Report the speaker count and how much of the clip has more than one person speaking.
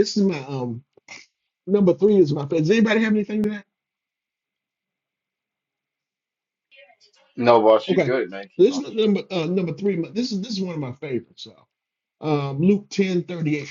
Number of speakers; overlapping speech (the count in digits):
2, about 4%